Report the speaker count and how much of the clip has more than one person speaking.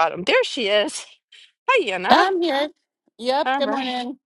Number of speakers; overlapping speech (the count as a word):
two, about 19%